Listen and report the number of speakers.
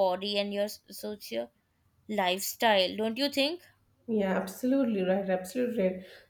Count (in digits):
2